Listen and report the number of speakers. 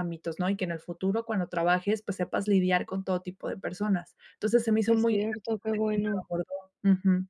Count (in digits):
2